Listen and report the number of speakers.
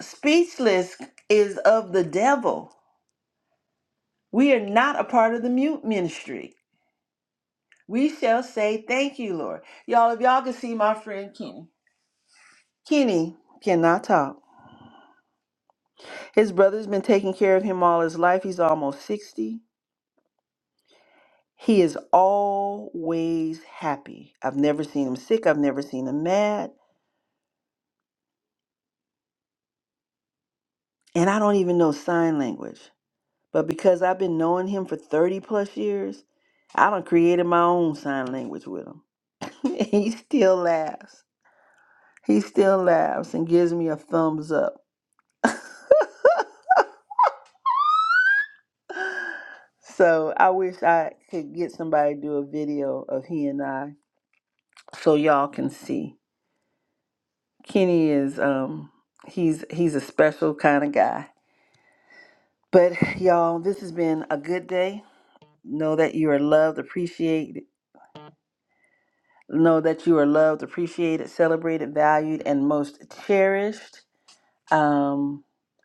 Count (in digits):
1